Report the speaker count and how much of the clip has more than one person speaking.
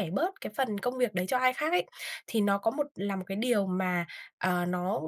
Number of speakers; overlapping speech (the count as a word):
one, no overlap